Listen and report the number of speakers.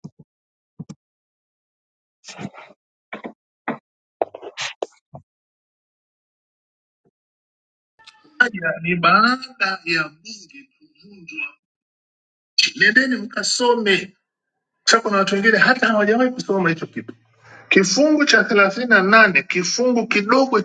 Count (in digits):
1